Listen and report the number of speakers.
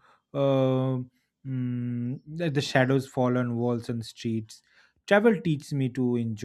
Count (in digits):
1